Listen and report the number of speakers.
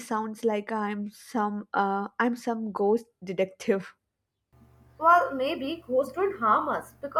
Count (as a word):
two